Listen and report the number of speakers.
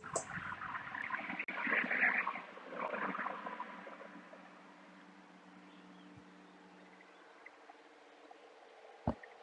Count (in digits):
0